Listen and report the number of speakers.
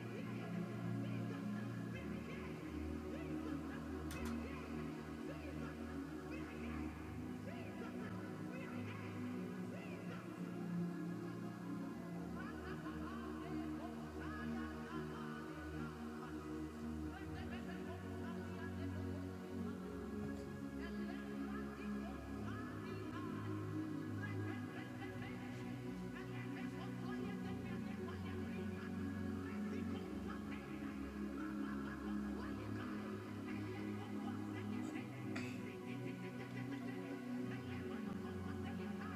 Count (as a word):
zero